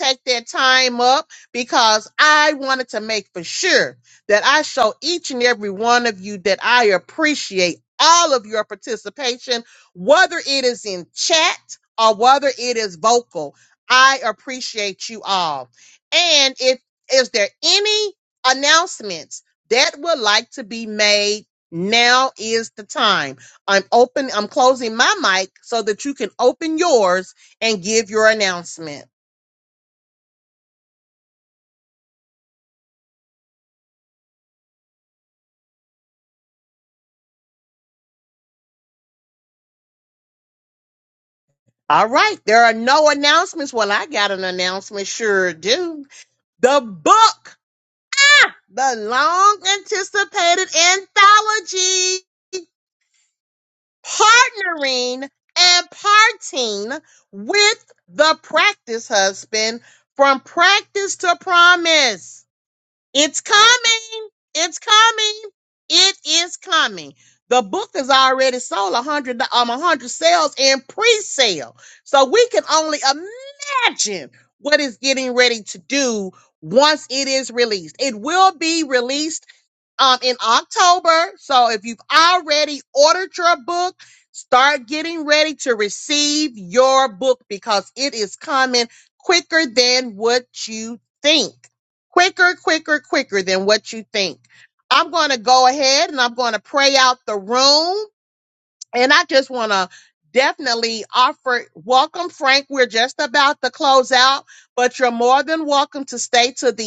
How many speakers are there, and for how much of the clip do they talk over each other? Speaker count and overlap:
1, no overlap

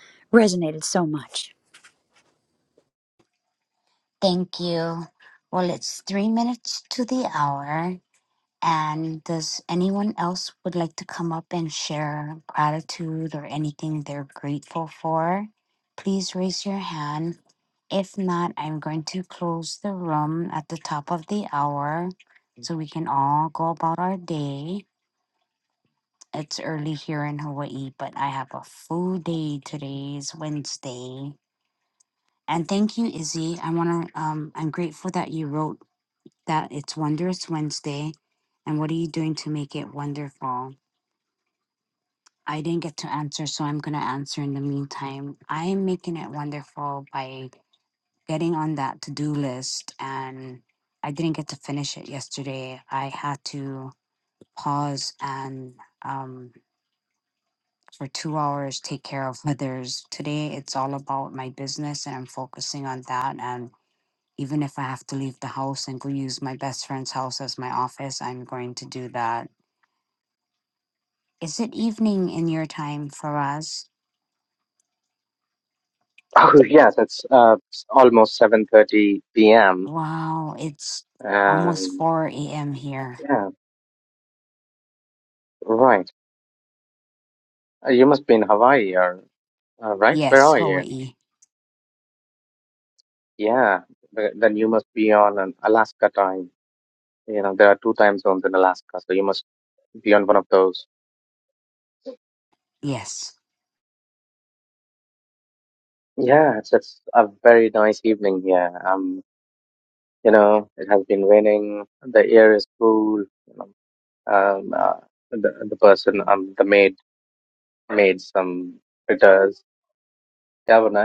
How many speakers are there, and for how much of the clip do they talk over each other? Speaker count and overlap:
3, about 1%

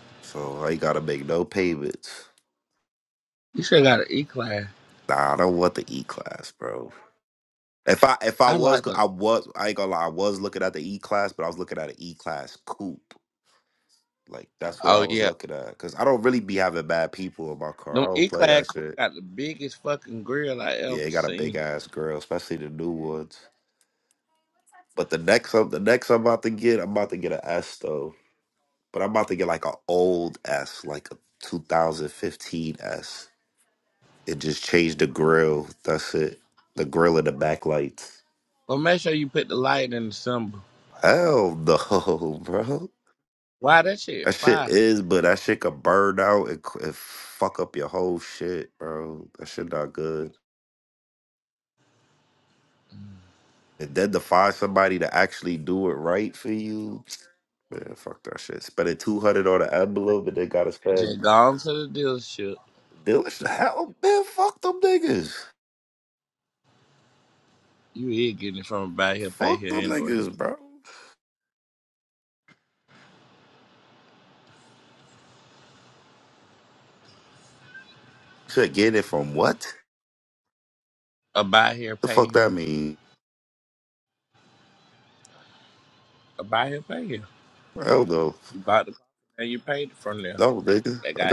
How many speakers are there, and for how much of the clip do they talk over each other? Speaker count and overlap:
2, about 5%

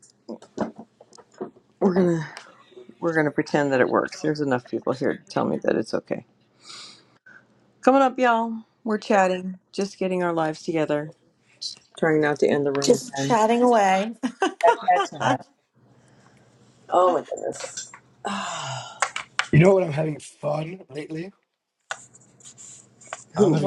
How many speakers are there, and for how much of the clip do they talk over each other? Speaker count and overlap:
3, about 3%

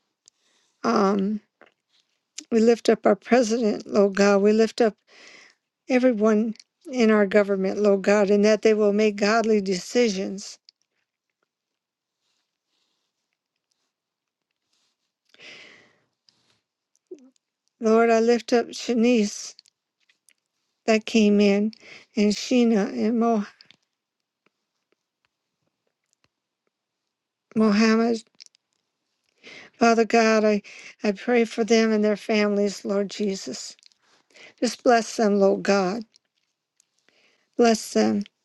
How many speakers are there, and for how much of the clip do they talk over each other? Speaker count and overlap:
1, no overlap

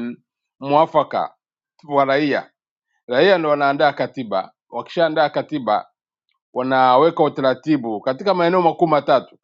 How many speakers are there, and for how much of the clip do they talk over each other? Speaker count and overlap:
1, no overlap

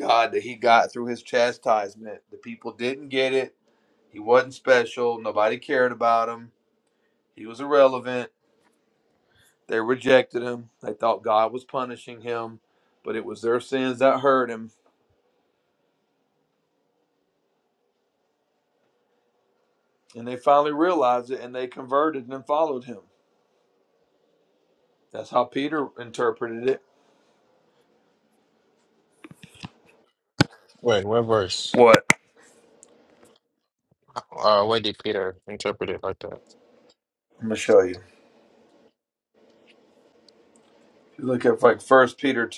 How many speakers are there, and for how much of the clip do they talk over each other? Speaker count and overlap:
2, under 1%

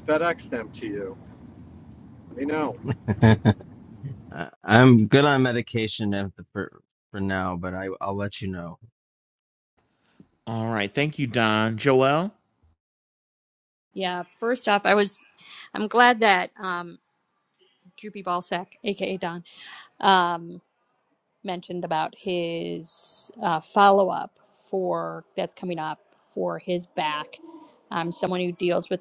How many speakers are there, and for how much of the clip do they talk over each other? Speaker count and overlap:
4, no overlap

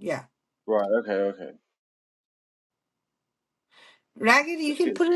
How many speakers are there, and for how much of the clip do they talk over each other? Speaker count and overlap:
2, about 6%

